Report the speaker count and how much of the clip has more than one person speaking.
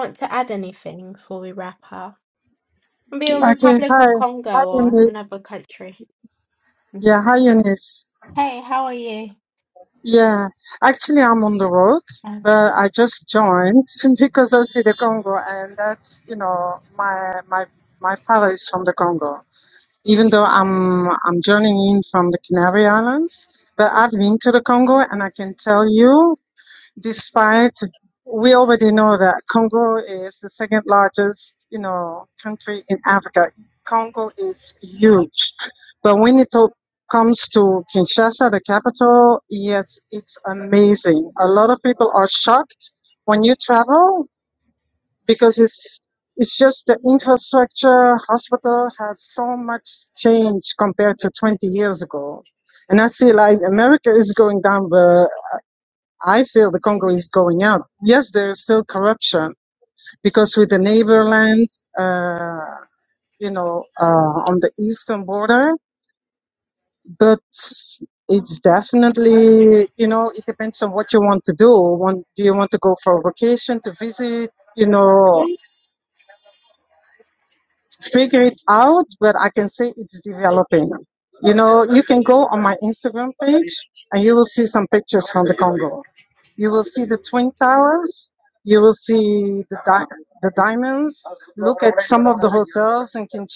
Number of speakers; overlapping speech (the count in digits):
2, about 1%